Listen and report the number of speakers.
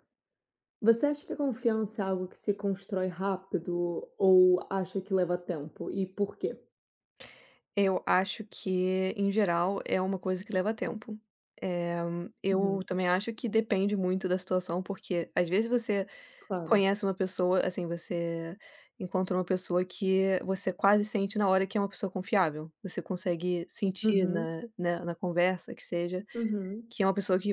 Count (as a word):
two